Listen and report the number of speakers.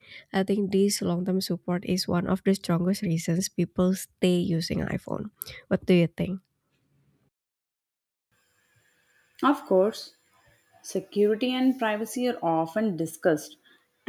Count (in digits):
2